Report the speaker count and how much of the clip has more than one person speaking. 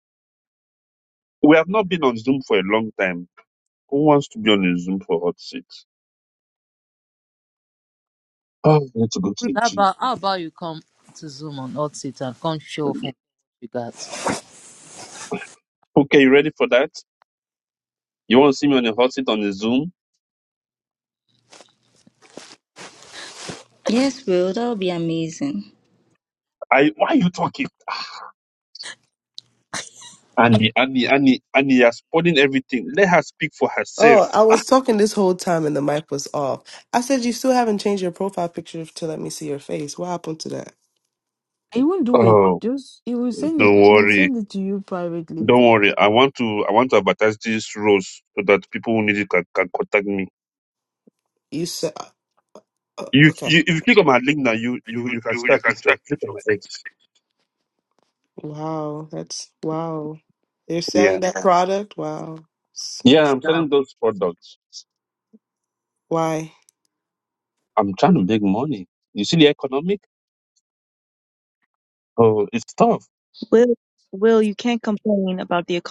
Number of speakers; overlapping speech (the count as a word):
six, about 4%